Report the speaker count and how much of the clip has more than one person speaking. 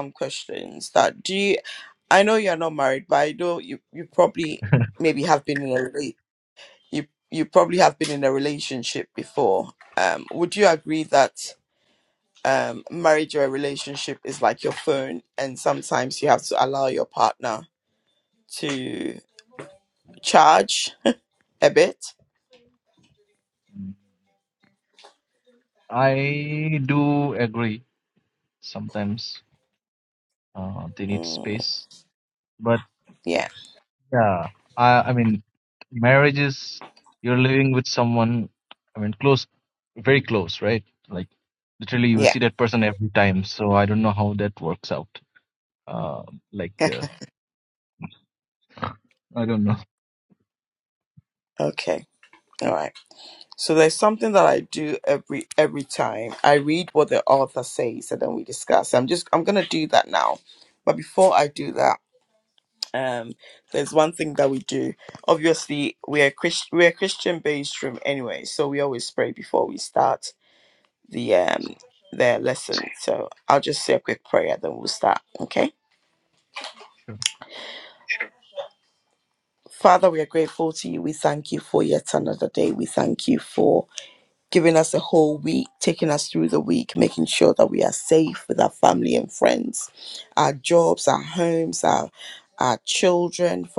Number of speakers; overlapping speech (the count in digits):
2, about 1%